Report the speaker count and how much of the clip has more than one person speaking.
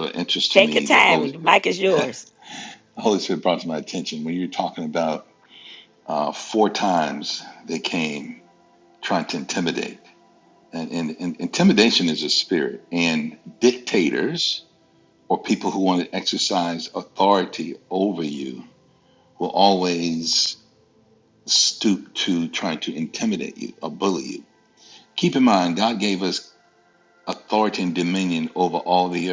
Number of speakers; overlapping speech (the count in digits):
2, about 3%